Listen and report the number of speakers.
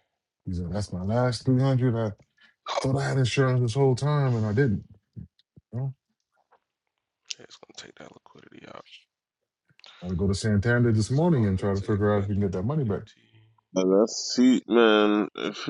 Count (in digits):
3